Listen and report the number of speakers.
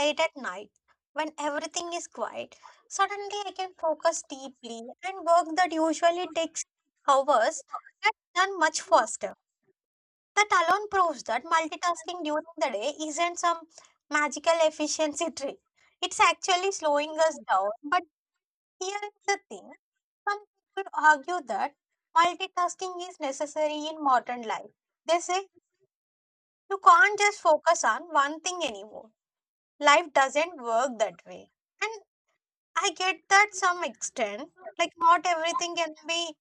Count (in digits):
1